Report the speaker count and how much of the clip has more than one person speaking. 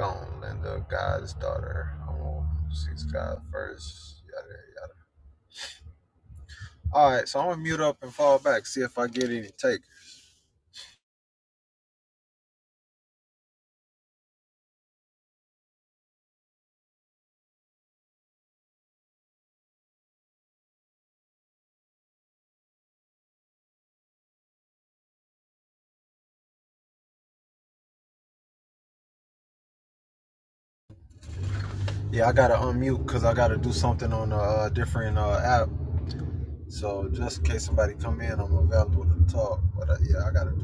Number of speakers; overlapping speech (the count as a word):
one, no overlap